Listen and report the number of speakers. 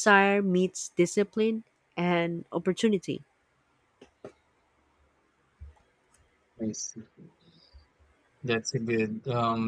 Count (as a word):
two